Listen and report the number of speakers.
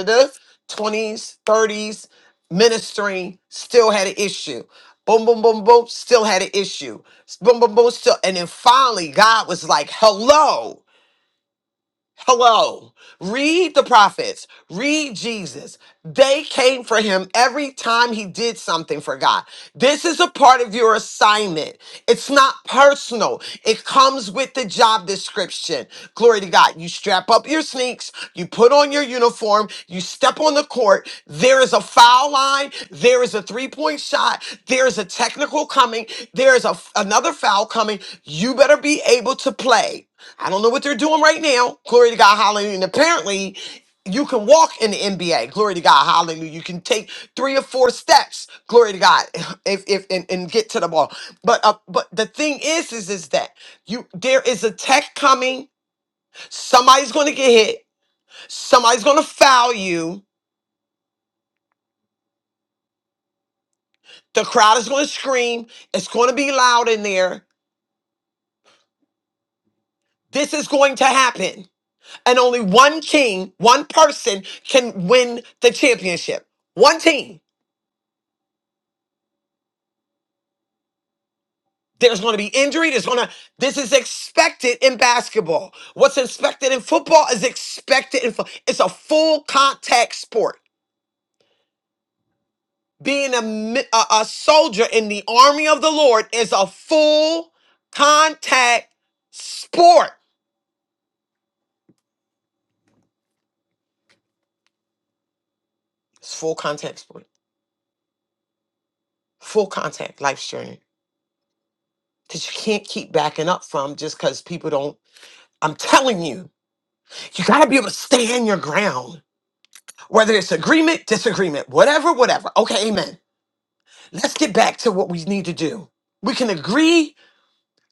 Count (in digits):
1